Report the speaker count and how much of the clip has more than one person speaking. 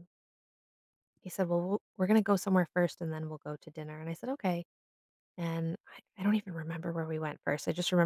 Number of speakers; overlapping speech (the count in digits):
1, no overlap